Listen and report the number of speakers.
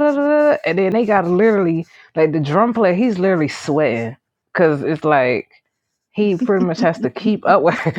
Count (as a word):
one